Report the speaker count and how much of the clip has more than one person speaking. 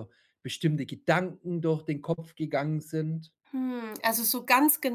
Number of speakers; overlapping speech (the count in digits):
2, no overlap